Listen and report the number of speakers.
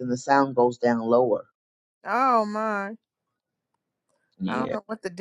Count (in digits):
2